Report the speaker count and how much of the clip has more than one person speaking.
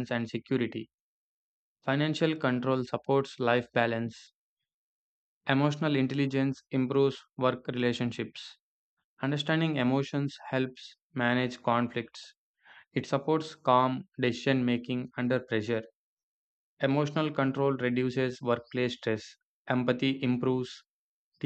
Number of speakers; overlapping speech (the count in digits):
1, no overlap